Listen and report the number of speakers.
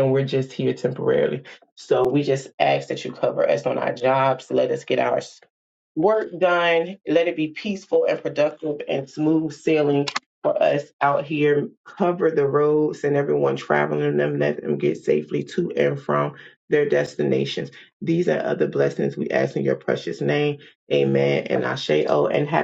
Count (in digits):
1